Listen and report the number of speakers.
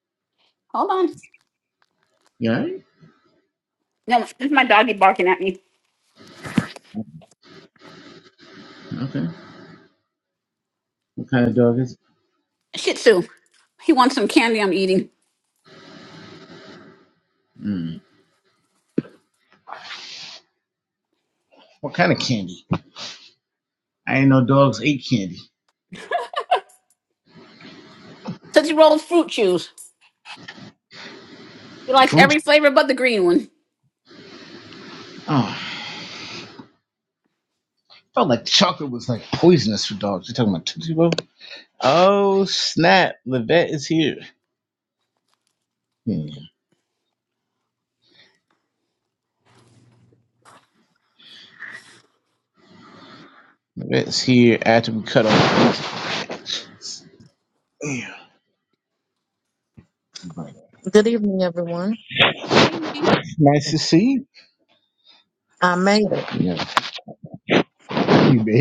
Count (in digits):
3